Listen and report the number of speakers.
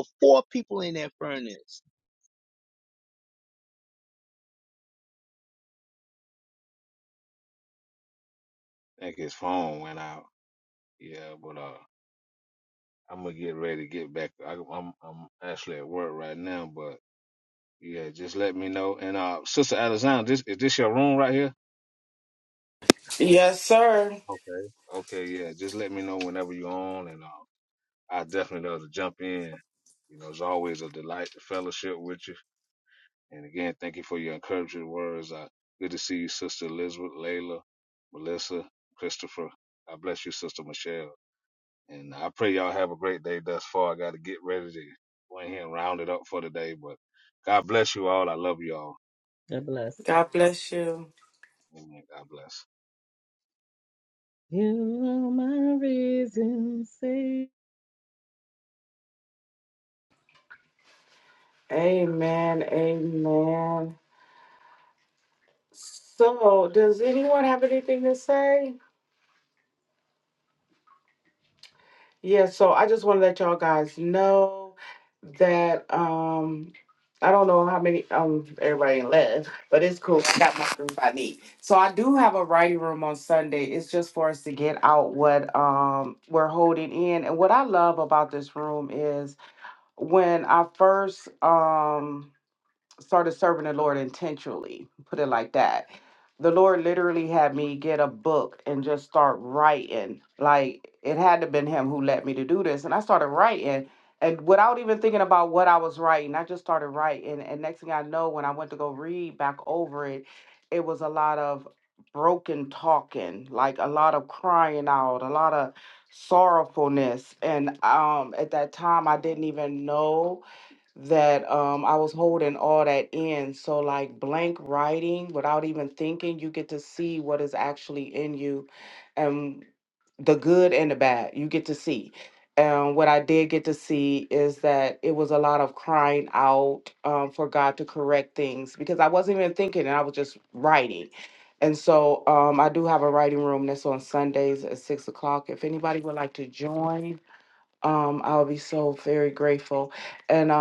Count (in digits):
4